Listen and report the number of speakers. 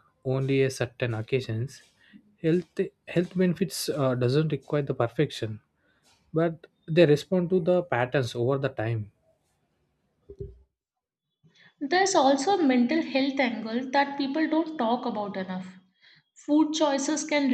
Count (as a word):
two